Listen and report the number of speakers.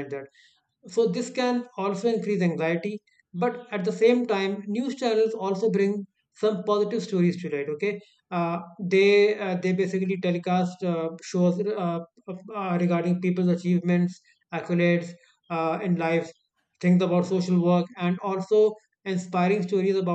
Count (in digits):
1